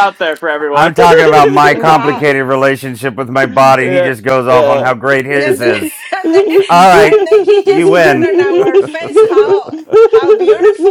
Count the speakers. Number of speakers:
3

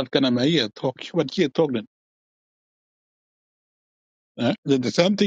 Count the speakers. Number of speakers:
1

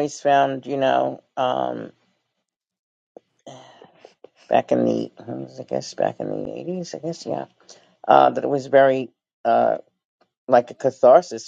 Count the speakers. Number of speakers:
1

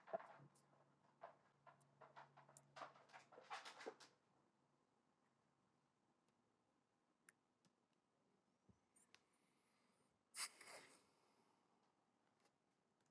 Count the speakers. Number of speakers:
0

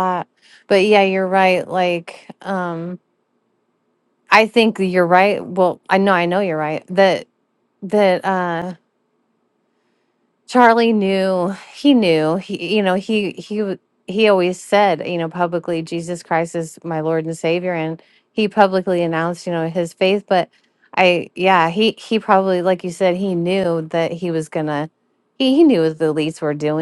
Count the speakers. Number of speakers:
1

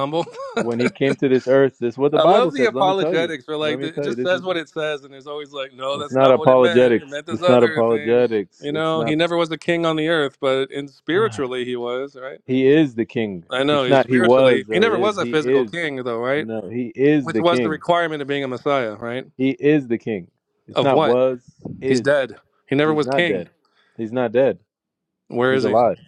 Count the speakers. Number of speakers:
2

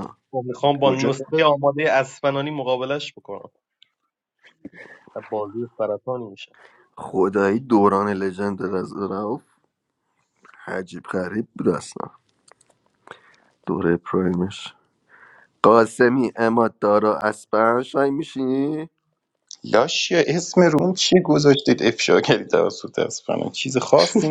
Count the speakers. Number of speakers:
3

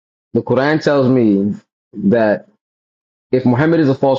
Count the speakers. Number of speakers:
1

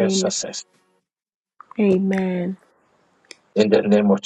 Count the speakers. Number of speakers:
2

